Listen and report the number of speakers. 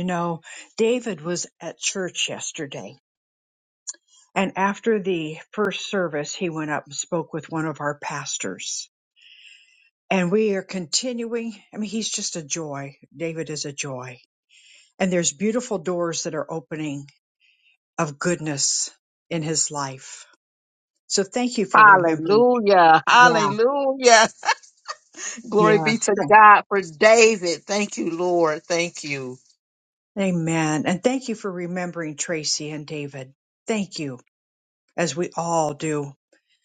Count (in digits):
2